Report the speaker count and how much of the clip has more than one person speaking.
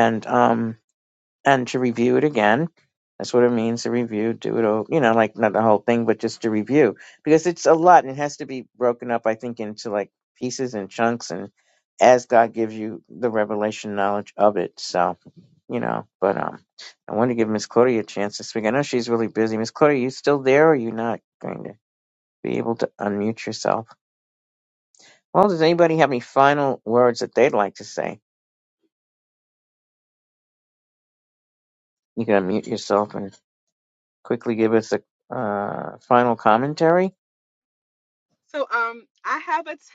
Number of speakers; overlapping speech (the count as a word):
two, no overlap